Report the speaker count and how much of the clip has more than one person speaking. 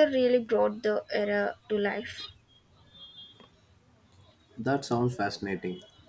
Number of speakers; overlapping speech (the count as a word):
two, no overlap